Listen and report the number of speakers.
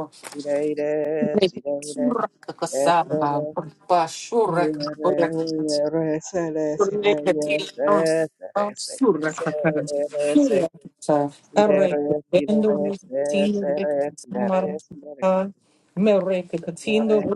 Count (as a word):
two